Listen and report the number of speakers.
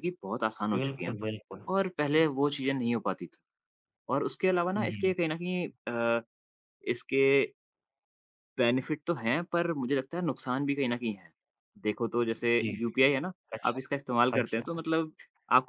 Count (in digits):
2